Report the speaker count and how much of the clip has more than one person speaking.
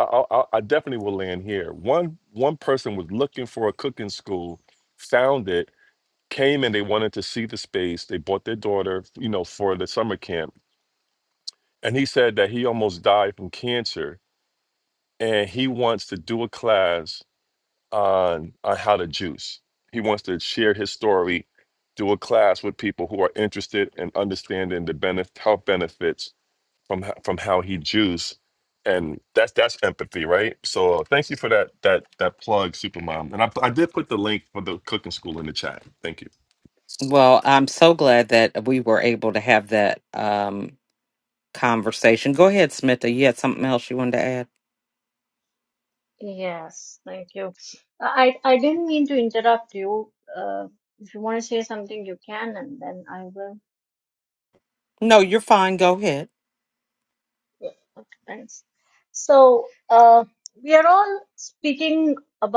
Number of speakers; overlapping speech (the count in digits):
3, no overlap